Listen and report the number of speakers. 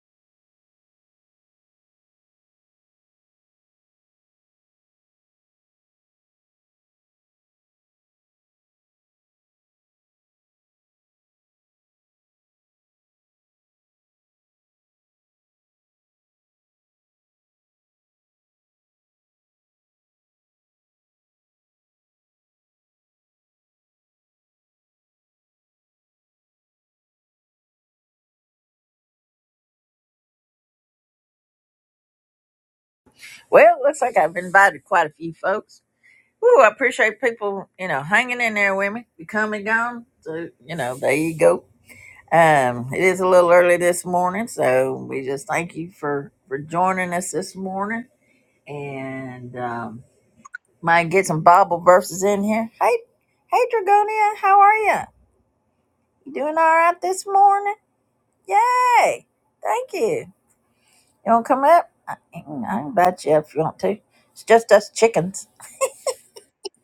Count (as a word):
one